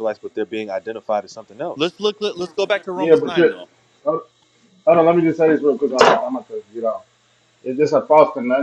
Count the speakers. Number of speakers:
3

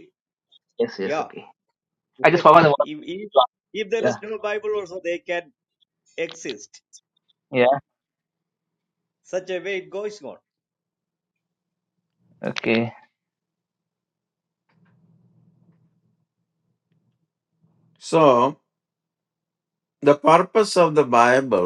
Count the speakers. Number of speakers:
3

